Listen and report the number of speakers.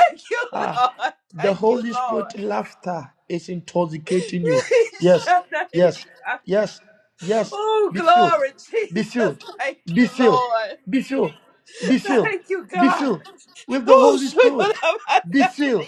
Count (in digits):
2